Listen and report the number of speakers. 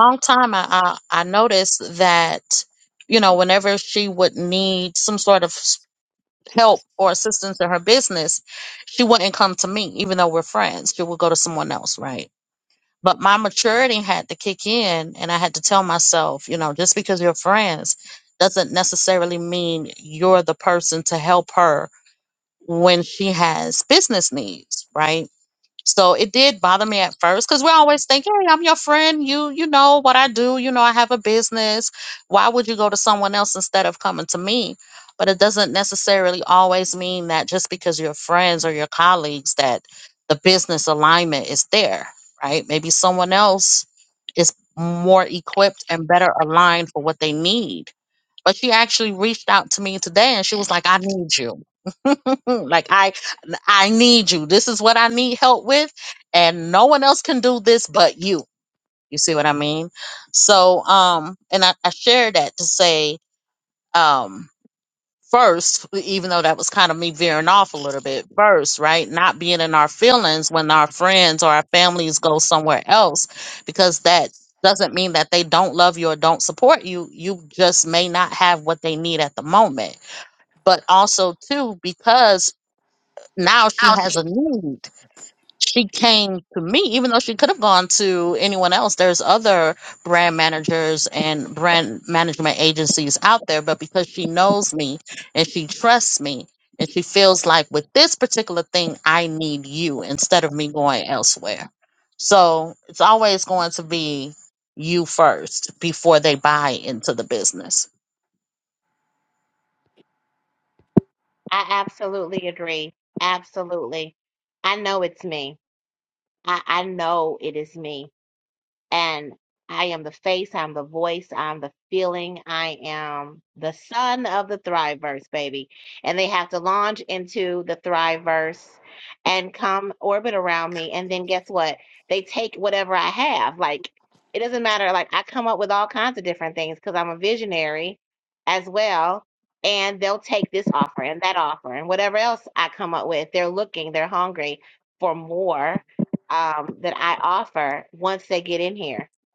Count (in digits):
2